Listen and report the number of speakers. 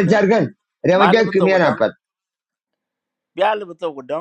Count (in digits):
2